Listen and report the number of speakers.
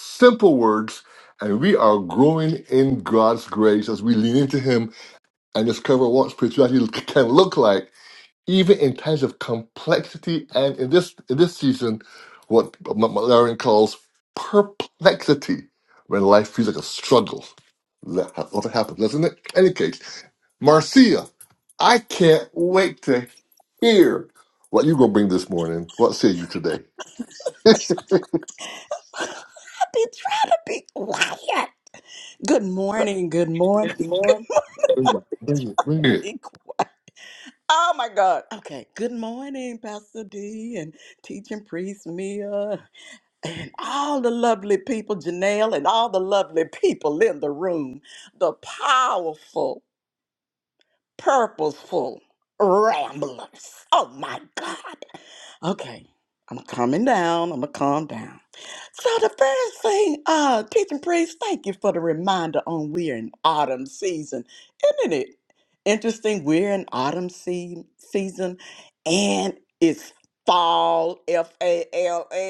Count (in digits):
2